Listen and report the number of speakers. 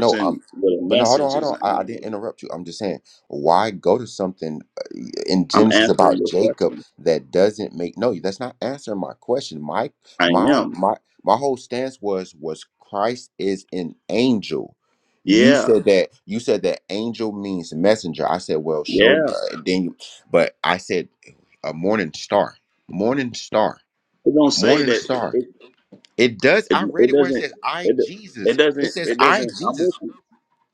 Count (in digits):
2